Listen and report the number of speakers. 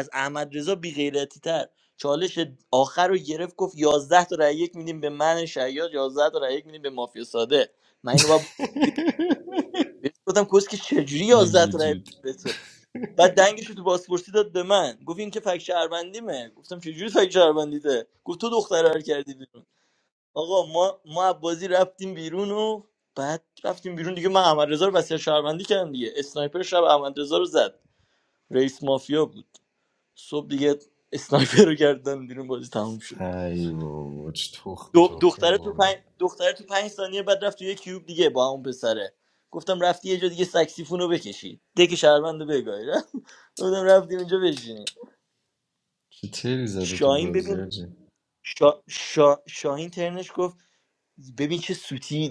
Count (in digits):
2